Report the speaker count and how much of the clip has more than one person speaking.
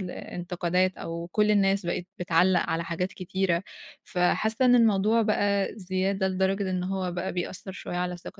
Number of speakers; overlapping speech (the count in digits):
1, no overlap